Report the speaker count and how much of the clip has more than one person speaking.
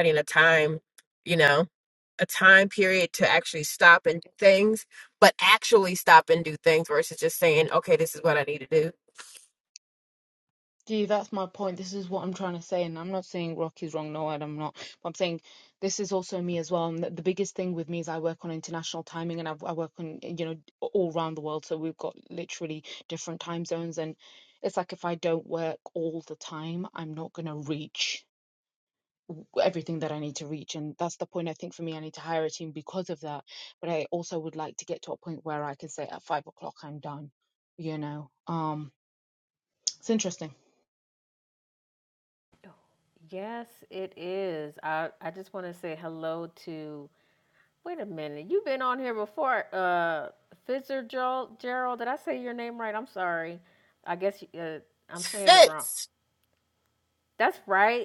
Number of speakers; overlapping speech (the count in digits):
3, about 1%